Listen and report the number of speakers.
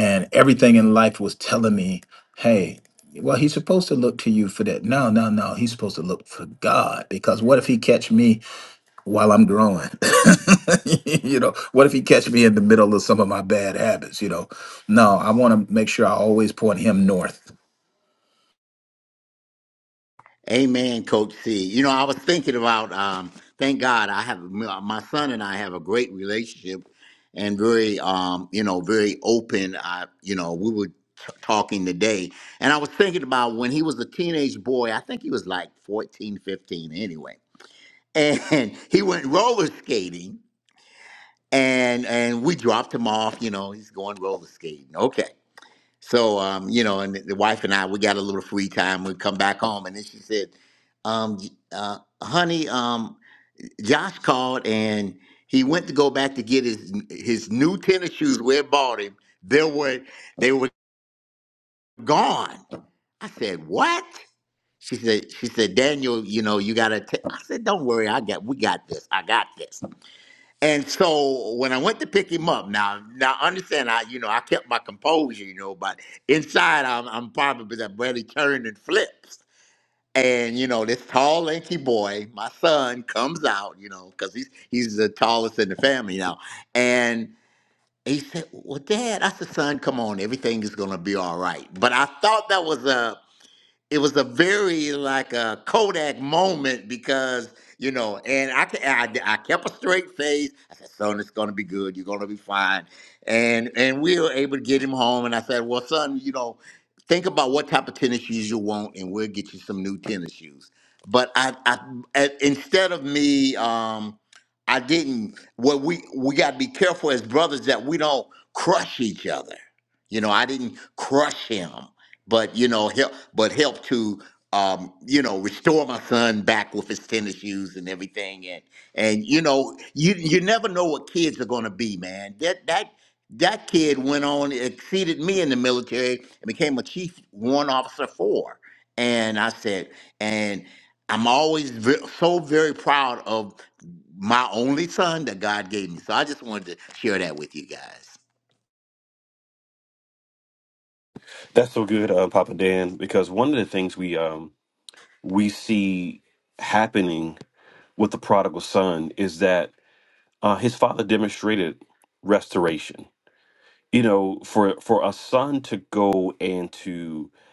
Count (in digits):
3